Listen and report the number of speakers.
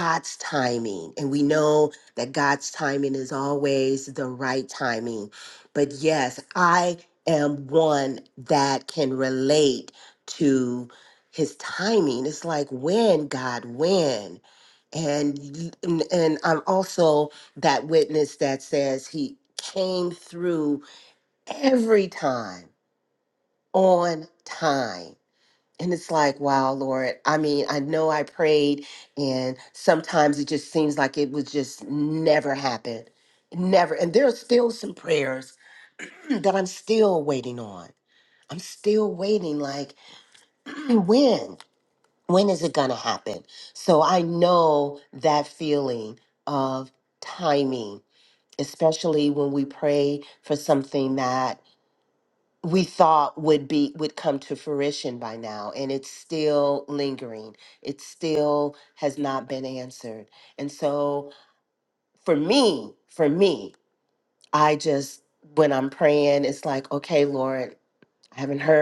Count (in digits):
1